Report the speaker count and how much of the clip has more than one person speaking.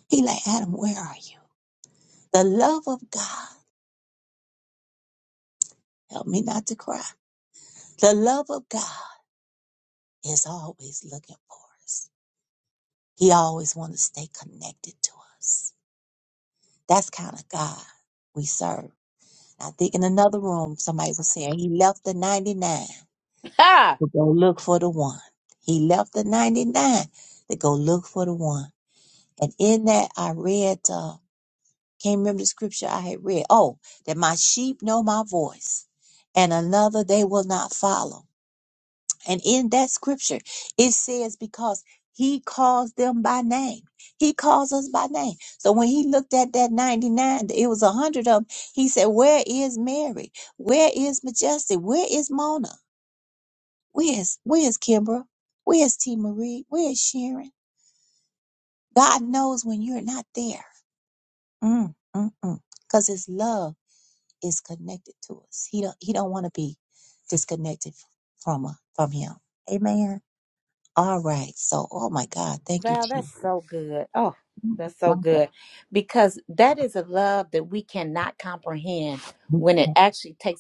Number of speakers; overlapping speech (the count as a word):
two, about 1%